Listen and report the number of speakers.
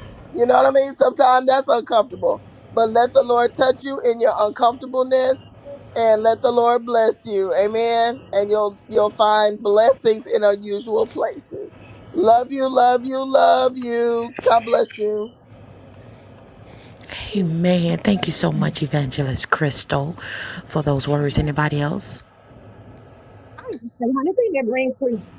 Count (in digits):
3